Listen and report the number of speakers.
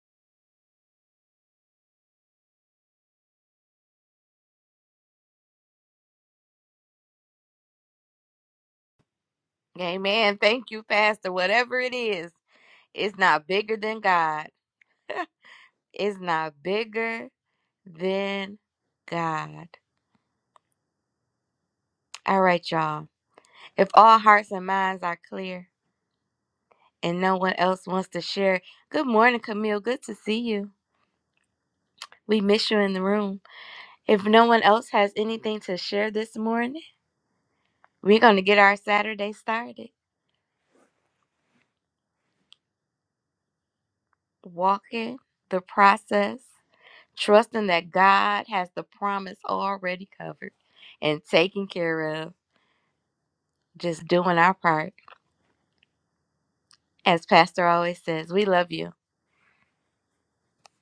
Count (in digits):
1